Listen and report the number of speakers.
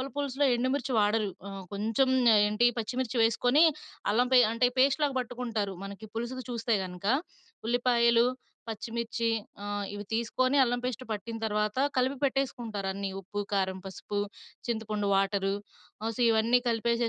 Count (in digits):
1